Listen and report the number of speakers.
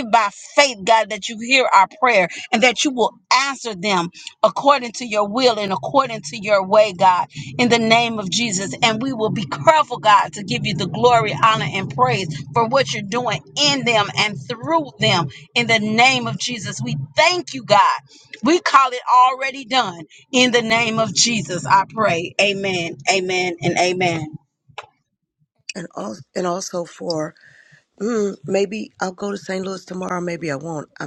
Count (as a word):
two